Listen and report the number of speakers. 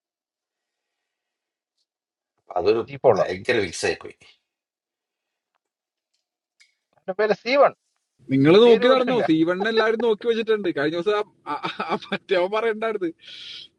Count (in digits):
3